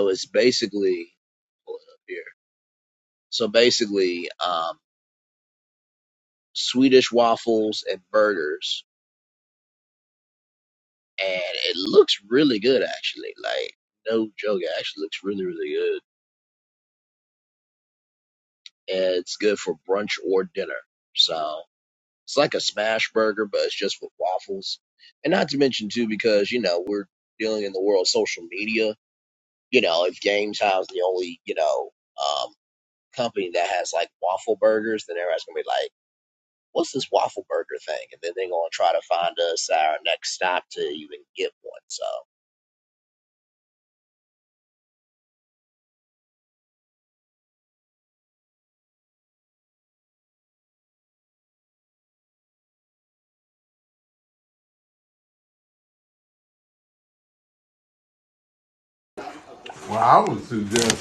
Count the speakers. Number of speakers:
2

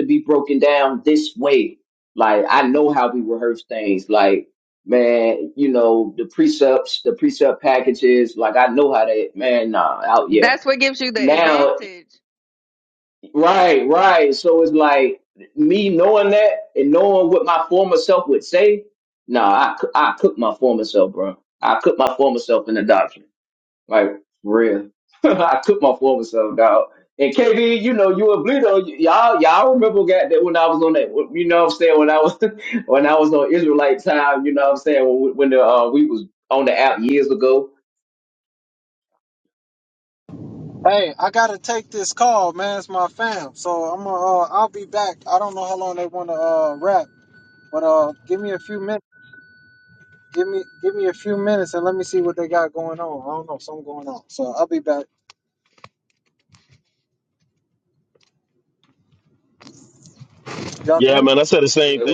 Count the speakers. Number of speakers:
4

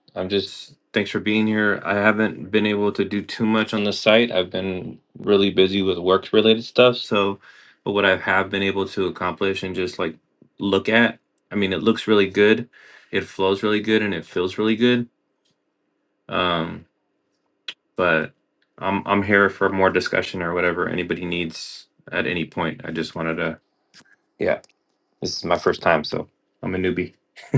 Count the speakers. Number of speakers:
1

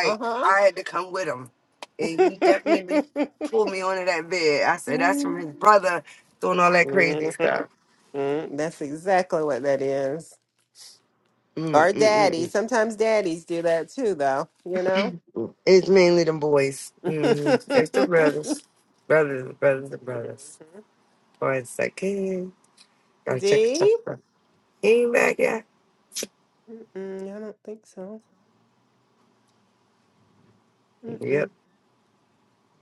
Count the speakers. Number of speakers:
2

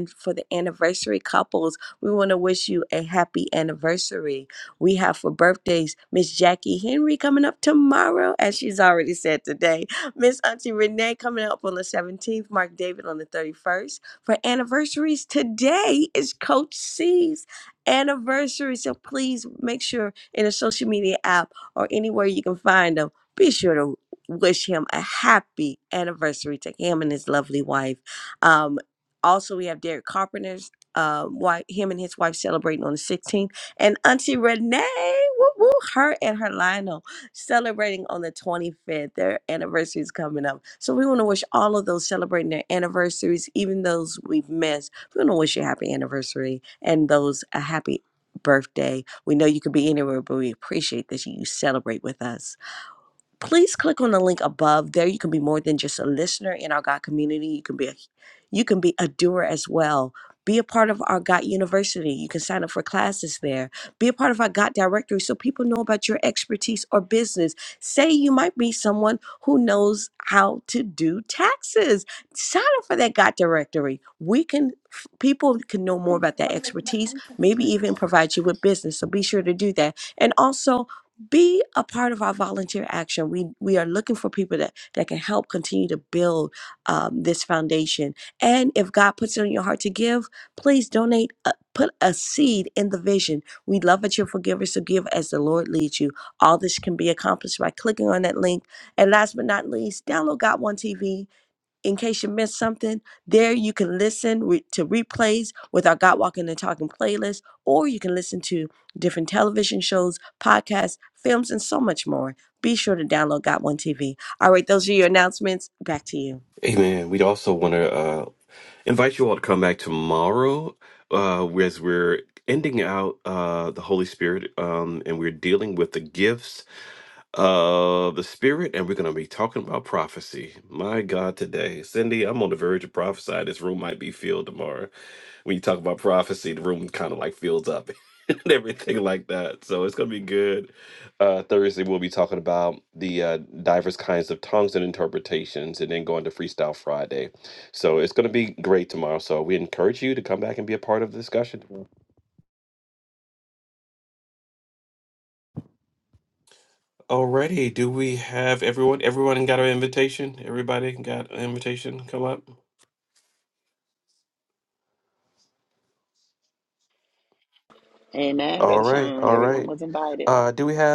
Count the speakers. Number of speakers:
3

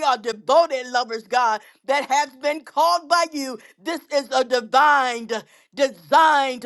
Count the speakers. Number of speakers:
1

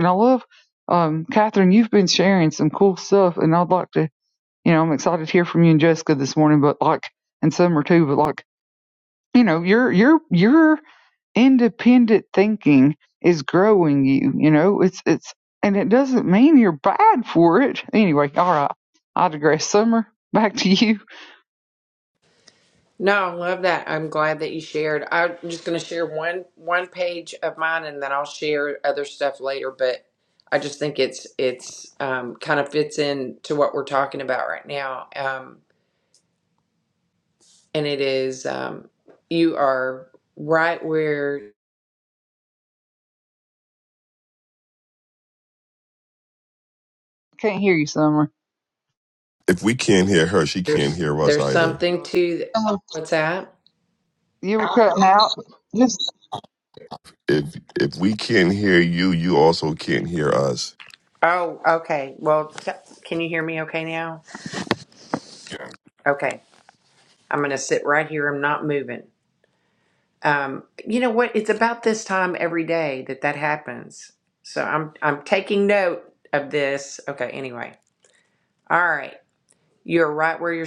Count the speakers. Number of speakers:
3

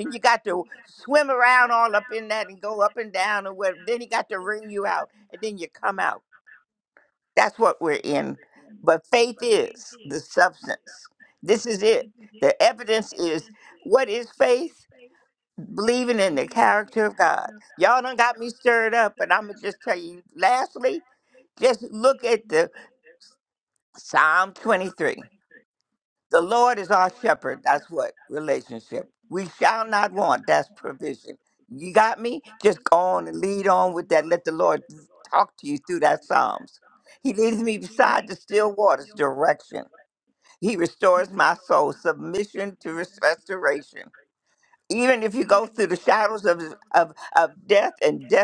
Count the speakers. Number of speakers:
1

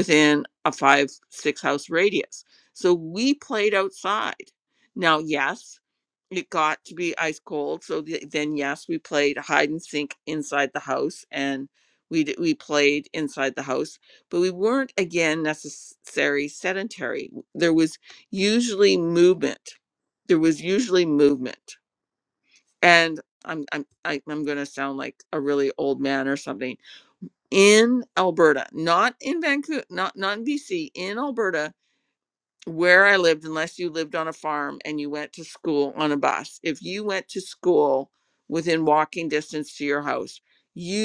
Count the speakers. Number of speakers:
1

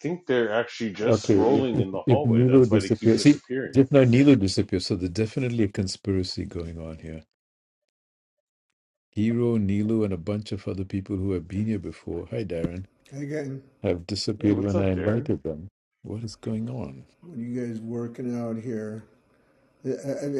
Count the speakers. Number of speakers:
3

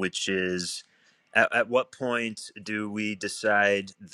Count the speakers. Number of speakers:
1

